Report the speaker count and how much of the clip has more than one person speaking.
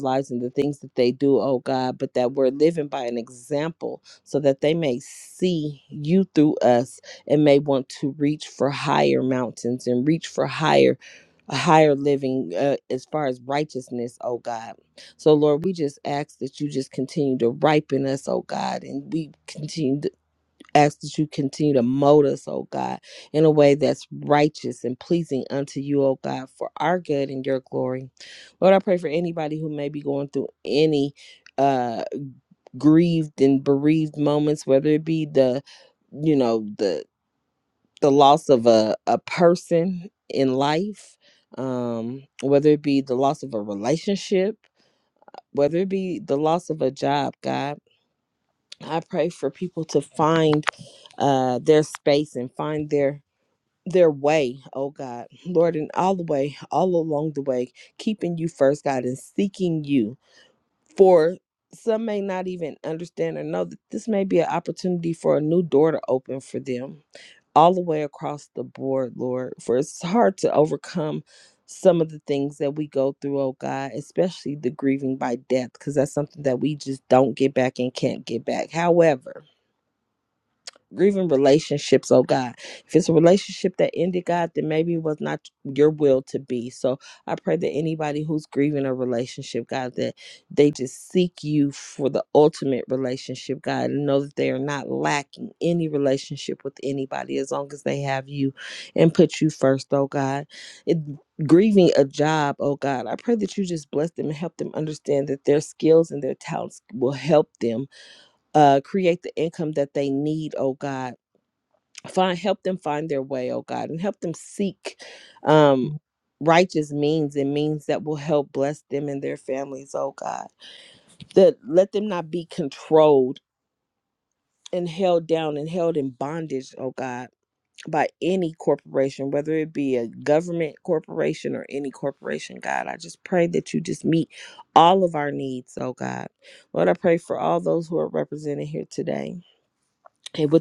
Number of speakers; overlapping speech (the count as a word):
one, no overlap